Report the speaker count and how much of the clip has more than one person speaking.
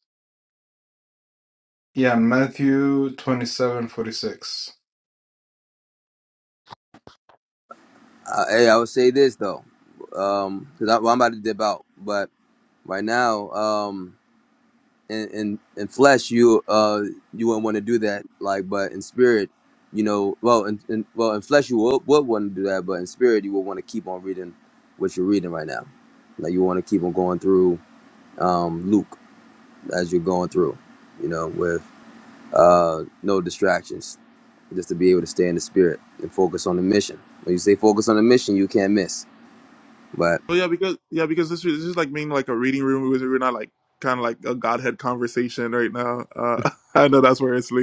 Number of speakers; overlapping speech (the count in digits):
3, no overlap